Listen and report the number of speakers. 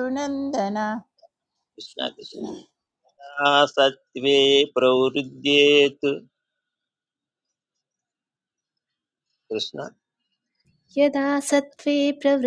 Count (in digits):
3